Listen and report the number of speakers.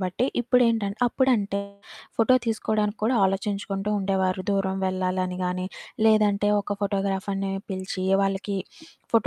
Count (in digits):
1